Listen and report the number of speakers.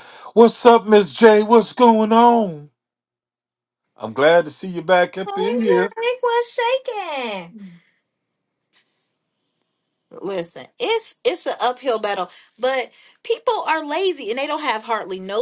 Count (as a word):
two